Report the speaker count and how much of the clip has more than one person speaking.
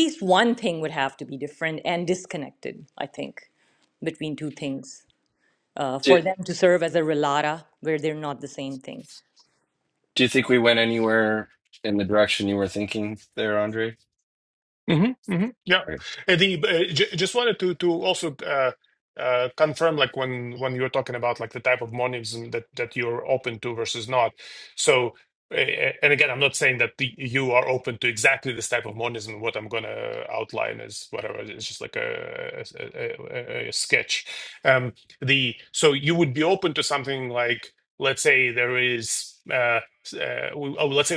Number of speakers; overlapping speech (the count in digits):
3, about 1%